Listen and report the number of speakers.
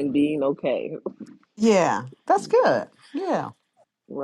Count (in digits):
2